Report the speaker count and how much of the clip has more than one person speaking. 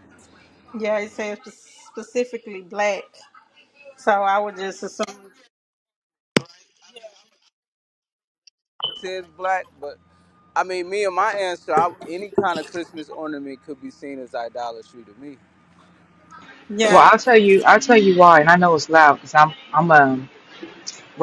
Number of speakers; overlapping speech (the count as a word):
three, about 1%